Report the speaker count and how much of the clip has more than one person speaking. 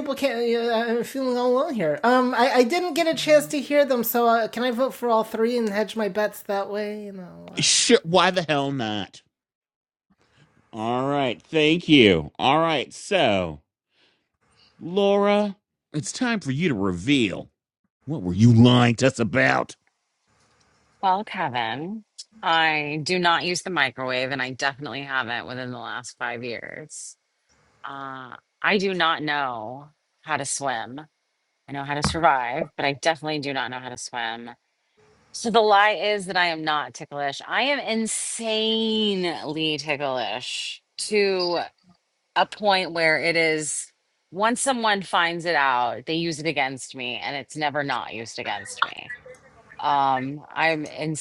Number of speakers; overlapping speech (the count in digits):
3, under 1%